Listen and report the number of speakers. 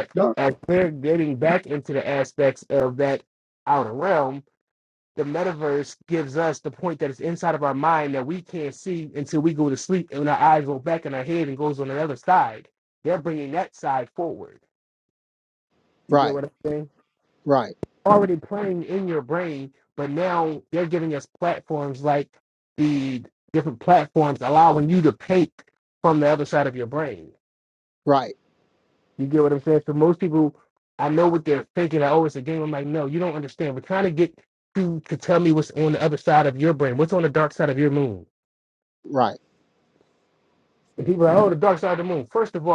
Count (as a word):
two